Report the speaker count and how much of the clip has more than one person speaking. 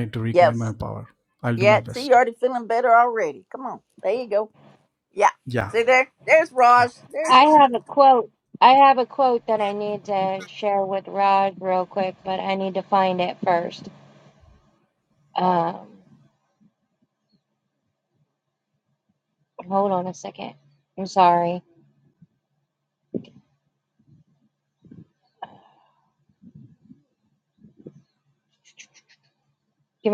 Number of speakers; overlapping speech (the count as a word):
three, about 4%